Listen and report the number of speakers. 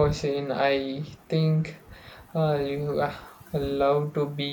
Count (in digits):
1